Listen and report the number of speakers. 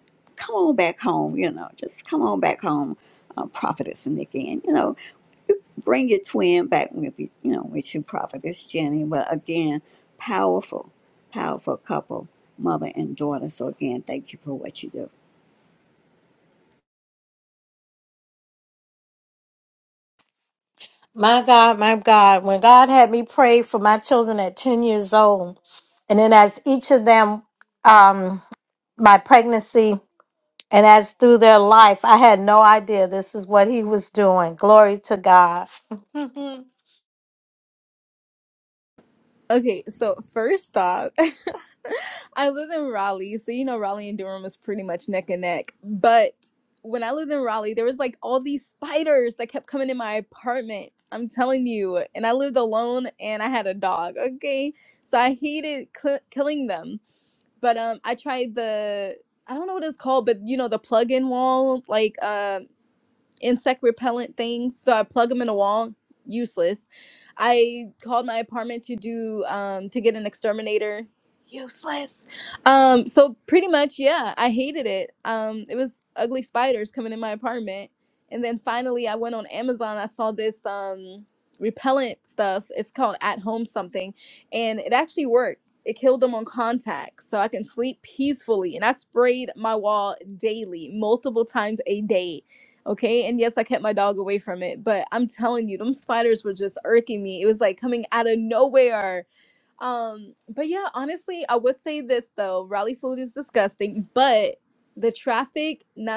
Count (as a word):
three